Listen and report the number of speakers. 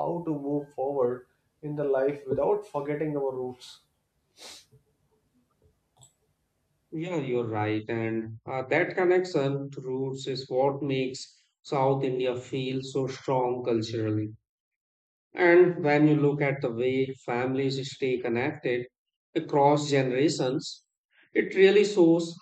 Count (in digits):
2